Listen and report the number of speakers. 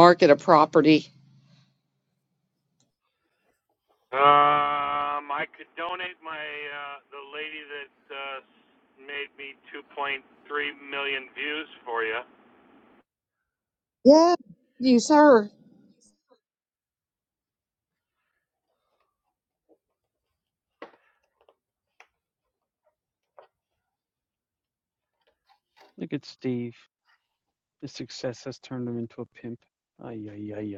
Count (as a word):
three